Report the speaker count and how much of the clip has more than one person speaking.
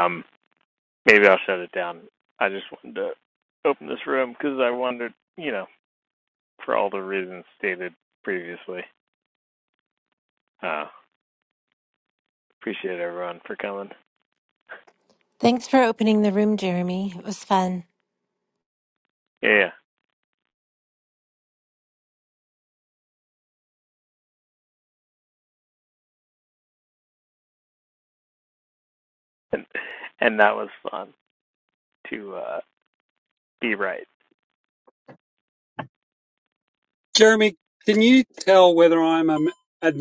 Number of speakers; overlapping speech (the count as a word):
three, no overlap